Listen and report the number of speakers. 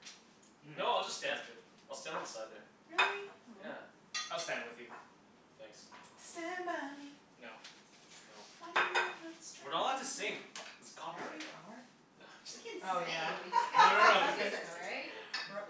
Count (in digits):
4